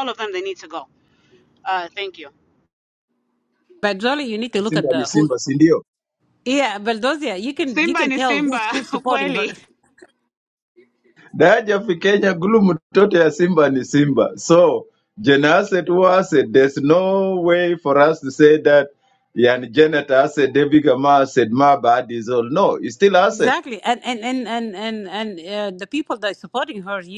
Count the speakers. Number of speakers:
3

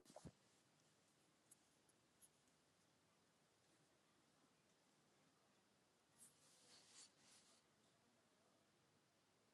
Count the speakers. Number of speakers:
0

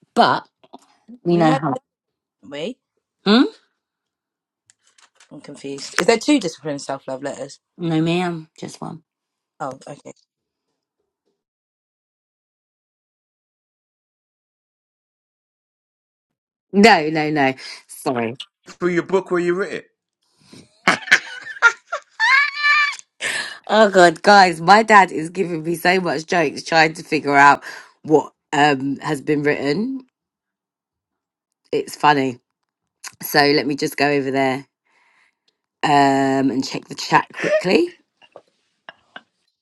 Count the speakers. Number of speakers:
3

